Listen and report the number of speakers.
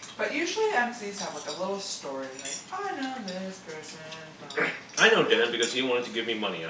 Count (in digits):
2